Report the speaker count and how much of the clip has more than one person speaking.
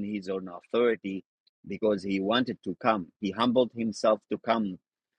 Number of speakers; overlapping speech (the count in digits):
1, no overlap